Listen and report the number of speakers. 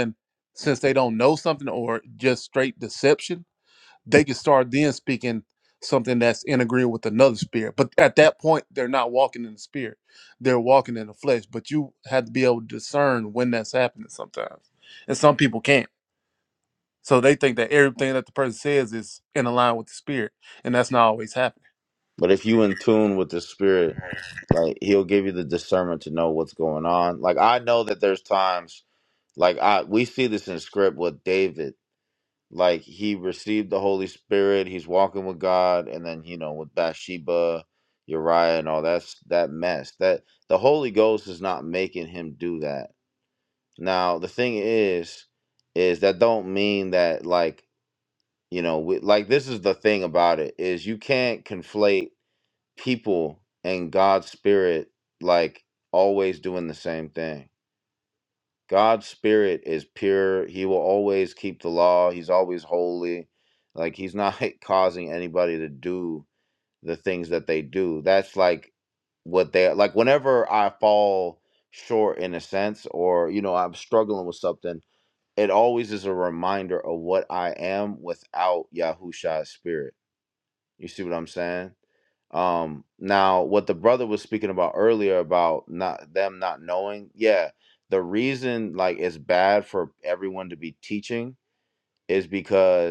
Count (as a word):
two